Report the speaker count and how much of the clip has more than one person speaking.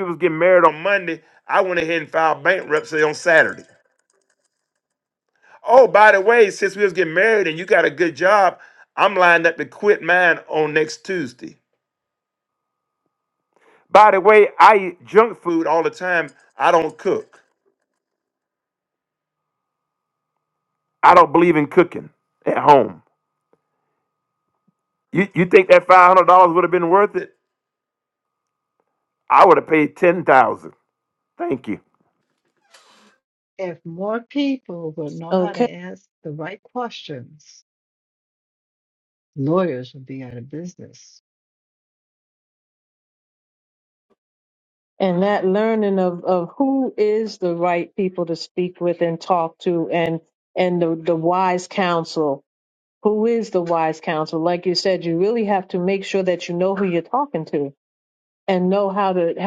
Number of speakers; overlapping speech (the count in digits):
3, about 1%